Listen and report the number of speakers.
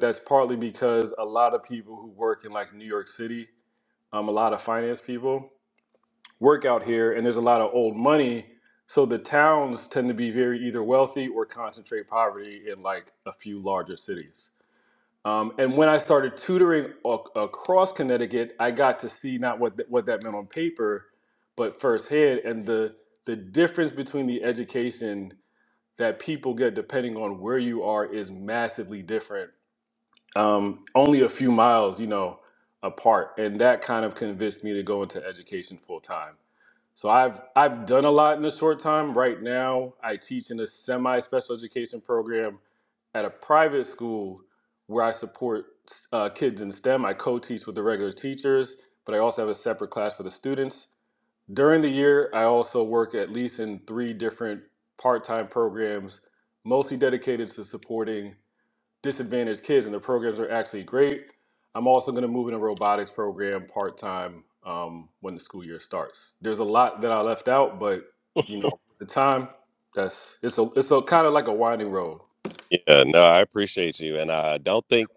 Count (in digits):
2